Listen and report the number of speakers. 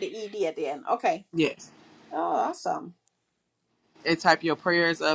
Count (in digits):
2